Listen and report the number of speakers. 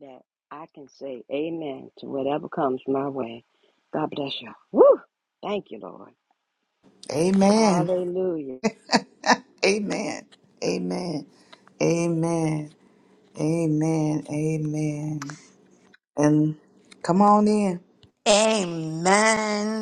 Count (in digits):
3